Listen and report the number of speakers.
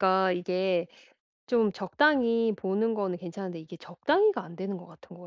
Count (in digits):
1